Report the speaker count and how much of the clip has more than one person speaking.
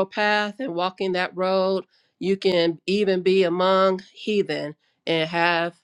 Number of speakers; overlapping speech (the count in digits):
1, no overlap